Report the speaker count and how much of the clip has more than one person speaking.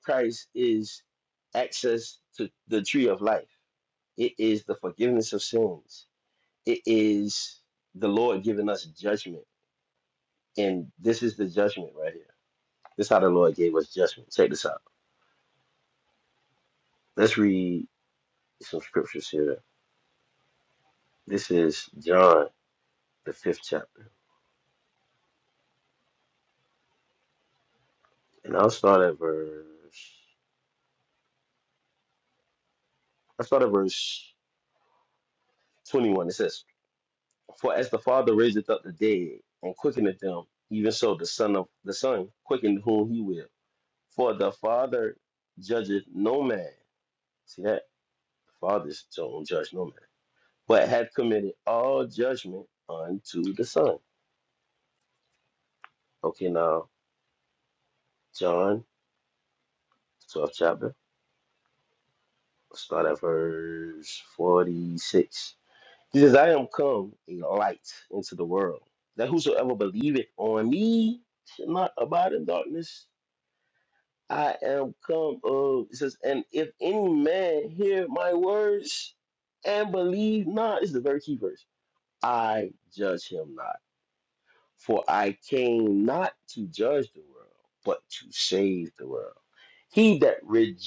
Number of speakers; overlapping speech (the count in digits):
1, no overlap